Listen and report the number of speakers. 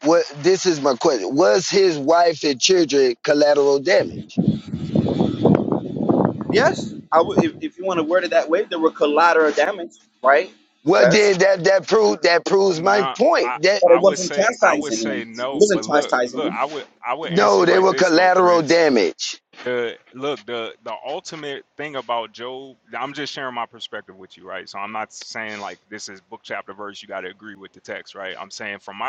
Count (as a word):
three